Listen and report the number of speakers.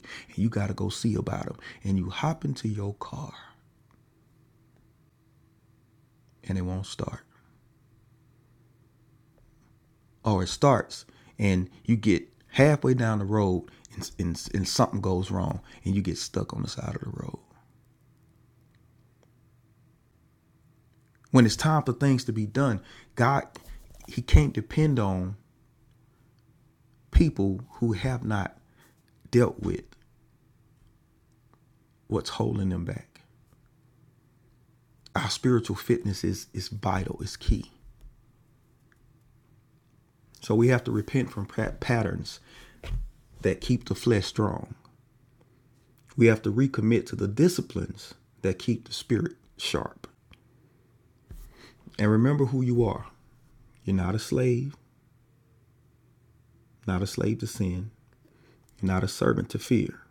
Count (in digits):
1